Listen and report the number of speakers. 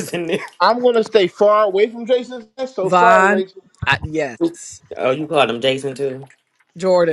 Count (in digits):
3